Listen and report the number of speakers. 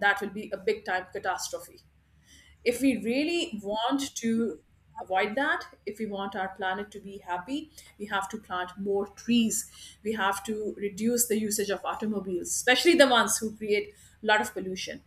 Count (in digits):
1